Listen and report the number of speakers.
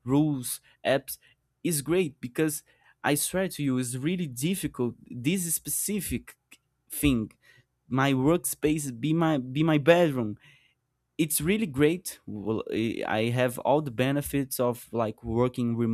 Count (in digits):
1